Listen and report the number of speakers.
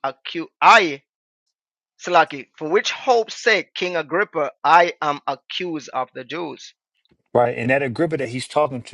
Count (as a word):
two